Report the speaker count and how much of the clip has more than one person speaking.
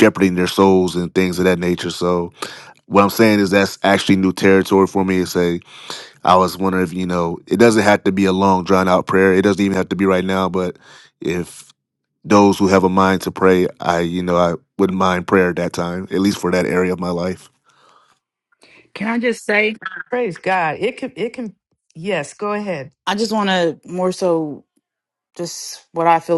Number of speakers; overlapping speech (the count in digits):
3, no overlap